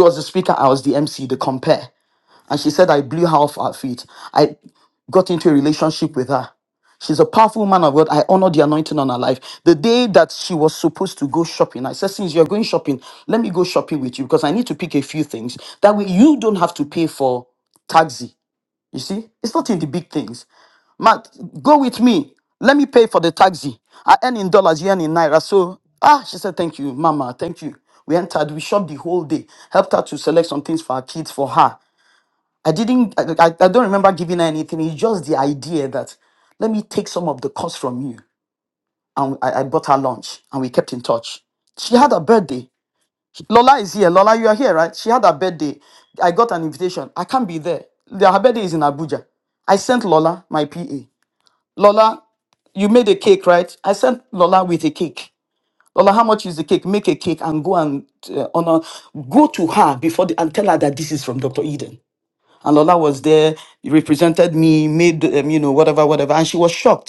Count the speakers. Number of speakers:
1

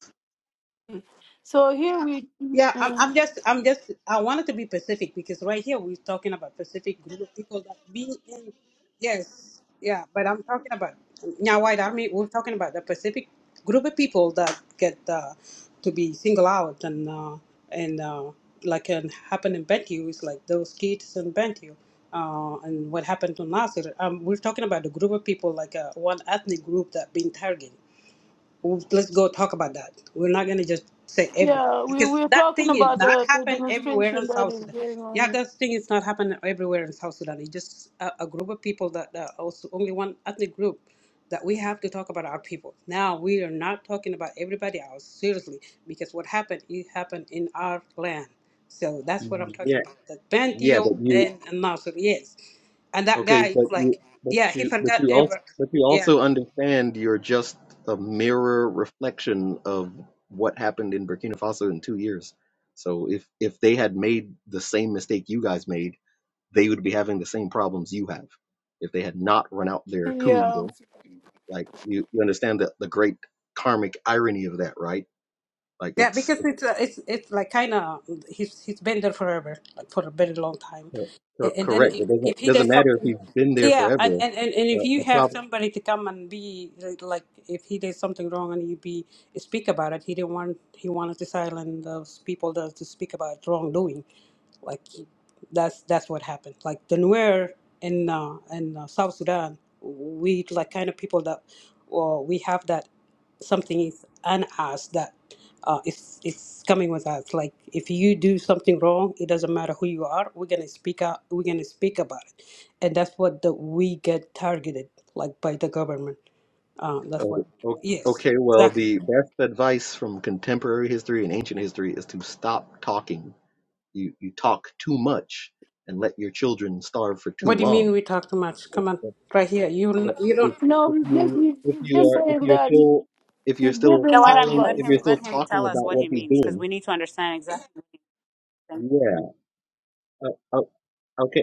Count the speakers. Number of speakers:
4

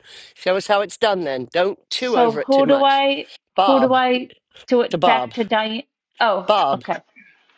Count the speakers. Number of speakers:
2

